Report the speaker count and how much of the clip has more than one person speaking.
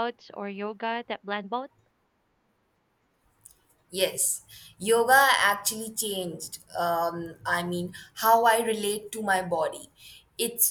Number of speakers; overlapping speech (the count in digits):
2, no overlap